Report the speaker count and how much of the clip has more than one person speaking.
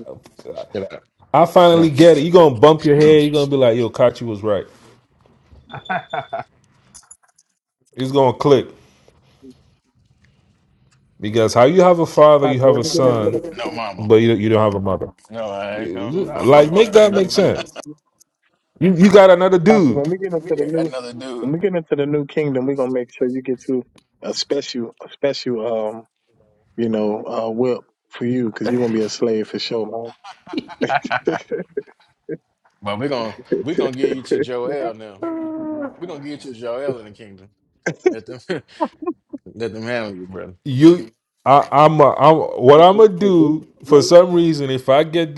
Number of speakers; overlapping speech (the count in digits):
3, about 6%